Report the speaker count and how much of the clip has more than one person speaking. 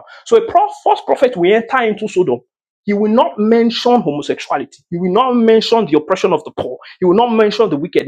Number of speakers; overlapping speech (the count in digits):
1, no overlap